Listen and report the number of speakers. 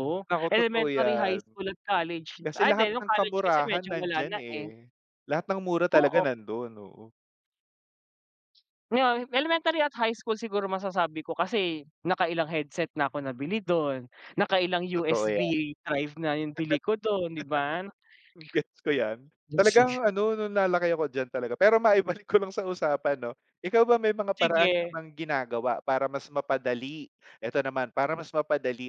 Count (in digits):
2